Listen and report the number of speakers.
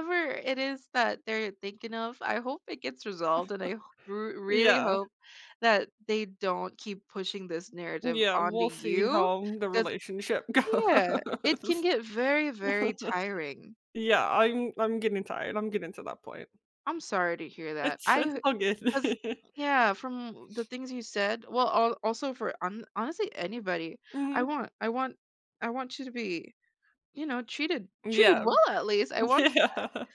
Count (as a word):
two